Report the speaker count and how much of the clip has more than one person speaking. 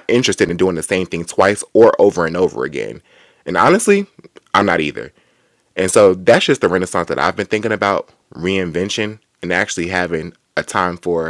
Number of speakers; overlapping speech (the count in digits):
1, no overlap